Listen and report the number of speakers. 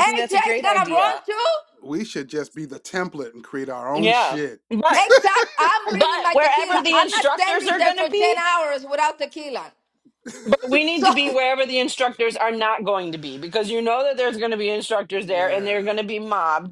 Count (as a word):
three